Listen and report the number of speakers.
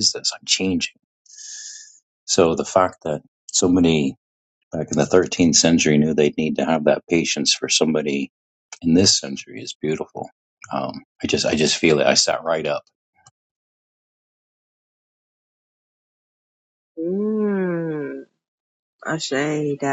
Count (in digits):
2